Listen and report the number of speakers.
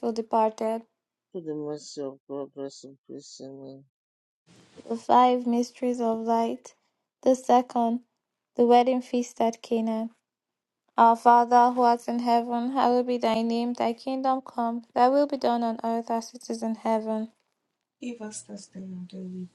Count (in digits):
3